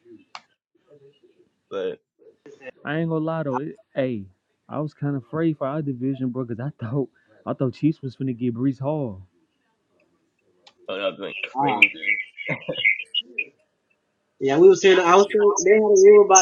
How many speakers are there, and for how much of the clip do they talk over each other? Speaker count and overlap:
three, about 2%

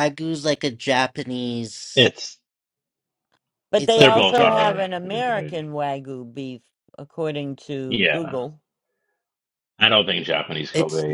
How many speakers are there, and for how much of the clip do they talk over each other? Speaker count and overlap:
three, about 23%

